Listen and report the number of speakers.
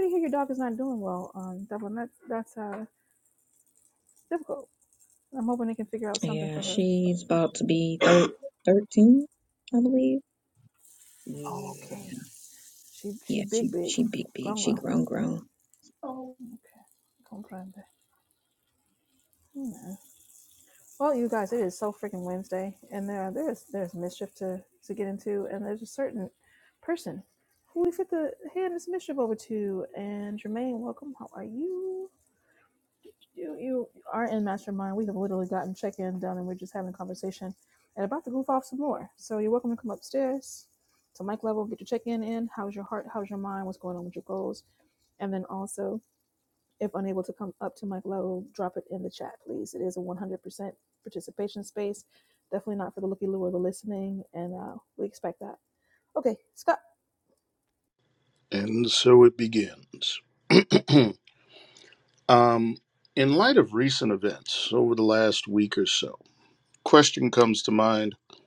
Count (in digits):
3